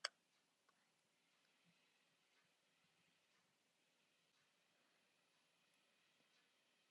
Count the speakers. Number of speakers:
0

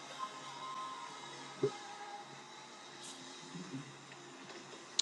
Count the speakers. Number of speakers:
0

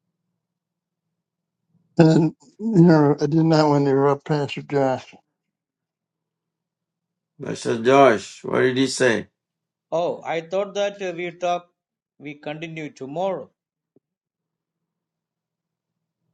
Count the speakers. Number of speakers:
3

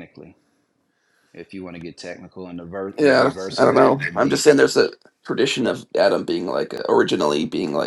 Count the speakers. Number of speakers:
2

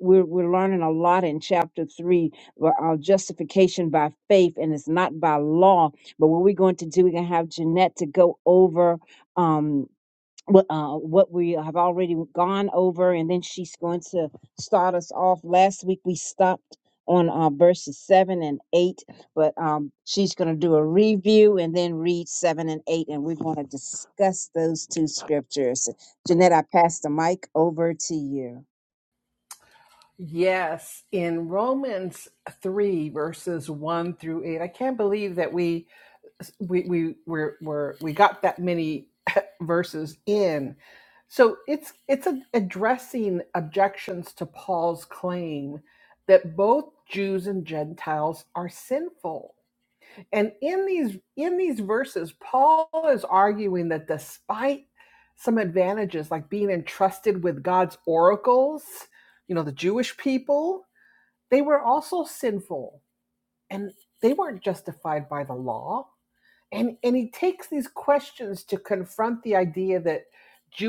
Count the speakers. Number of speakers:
2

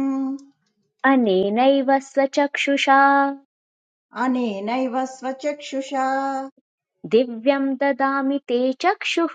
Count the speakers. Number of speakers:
2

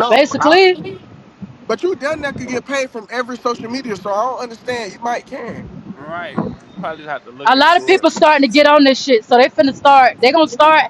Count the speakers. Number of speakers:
3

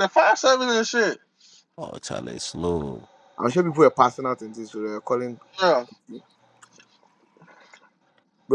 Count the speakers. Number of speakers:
3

